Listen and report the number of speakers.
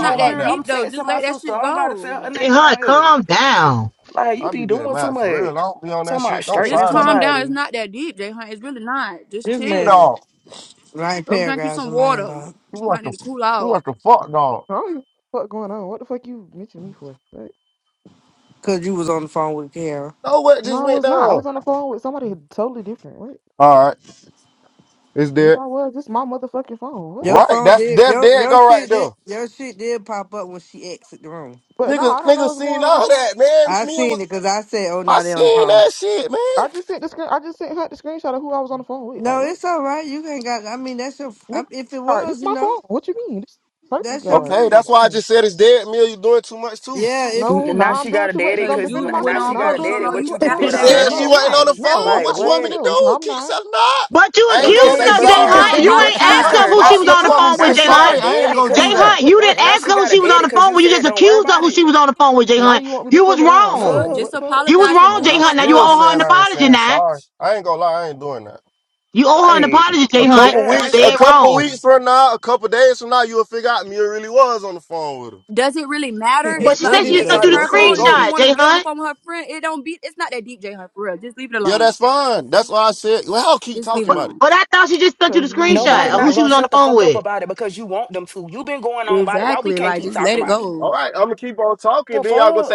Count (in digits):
6